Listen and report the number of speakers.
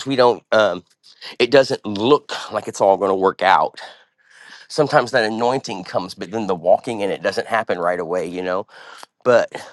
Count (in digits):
1